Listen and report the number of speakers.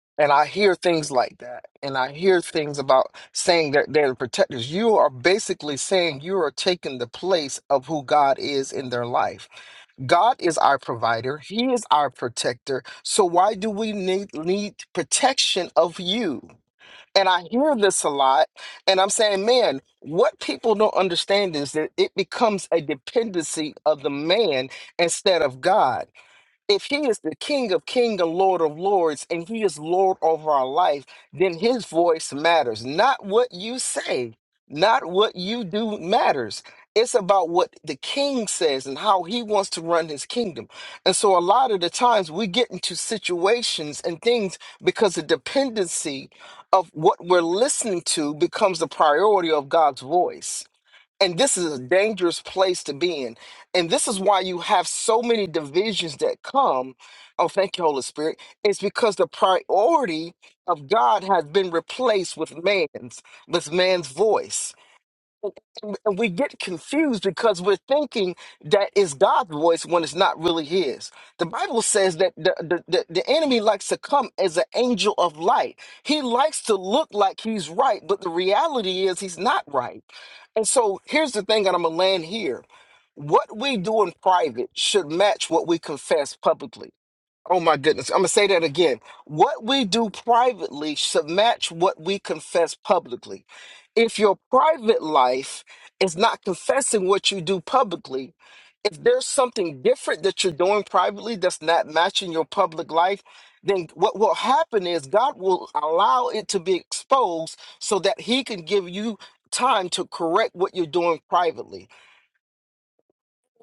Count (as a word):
one